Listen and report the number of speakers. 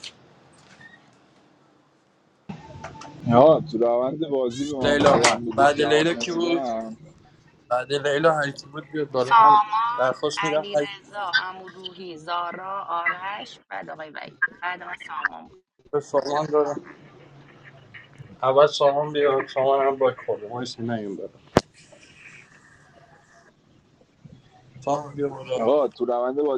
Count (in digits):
3